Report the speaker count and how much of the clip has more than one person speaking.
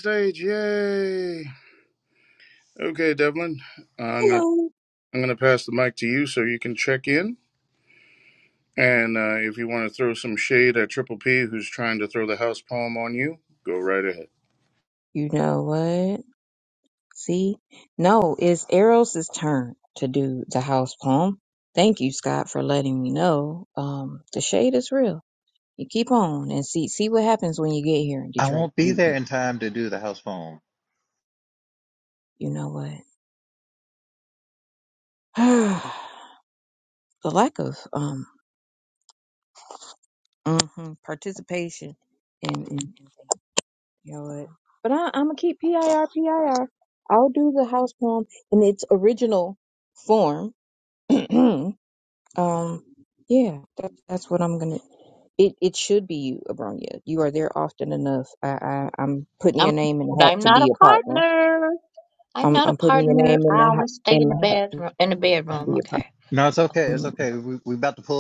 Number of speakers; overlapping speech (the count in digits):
4, about 7%